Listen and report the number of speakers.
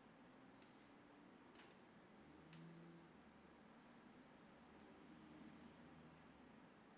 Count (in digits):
0